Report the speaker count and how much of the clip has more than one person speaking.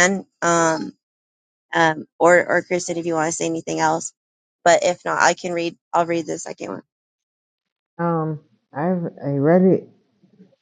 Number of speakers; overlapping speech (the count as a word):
two, no overlap